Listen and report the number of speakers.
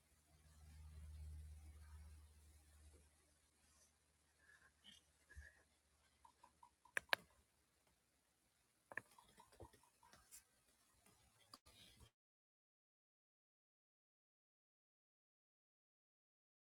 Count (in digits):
0